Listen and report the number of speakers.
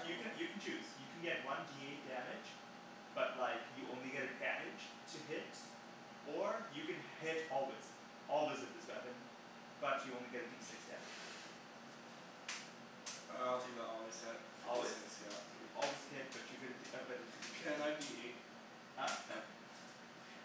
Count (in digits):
2